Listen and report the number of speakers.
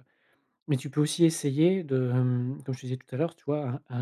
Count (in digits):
1